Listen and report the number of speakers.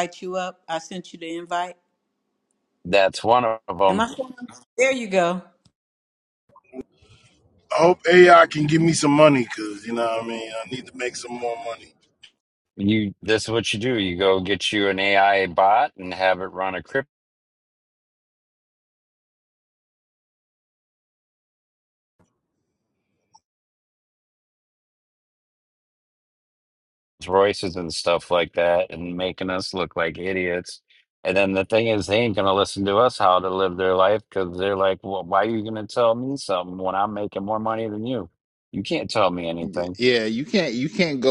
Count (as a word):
four